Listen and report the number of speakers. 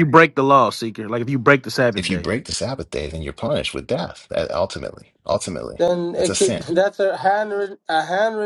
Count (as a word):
three